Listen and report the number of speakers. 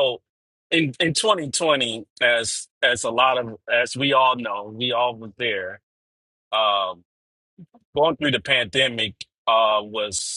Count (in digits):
1